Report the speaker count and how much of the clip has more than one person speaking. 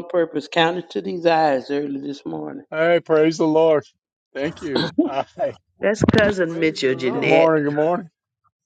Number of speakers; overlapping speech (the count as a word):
three, about 12%